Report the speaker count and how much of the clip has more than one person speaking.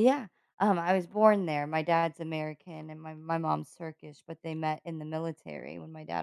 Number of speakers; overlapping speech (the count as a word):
one, no overlap